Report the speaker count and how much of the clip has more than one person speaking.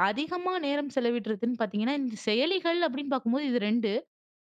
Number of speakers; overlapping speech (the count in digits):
1, no overlap